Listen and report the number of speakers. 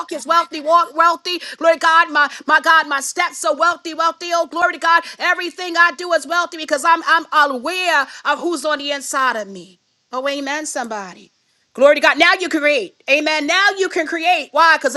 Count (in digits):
1